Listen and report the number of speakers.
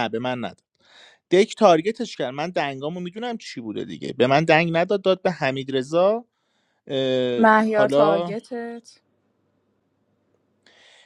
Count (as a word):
two